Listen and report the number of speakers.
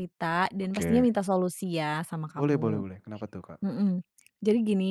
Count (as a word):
two